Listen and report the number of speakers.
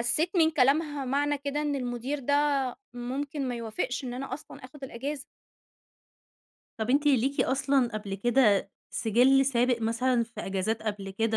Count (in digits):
2